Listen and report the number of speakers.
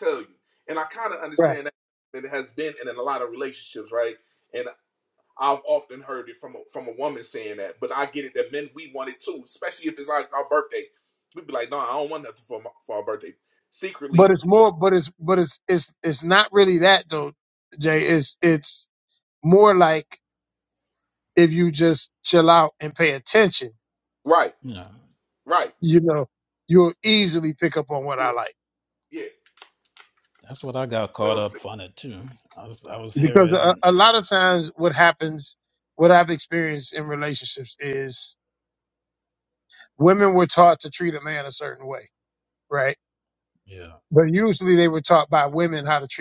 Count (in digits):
3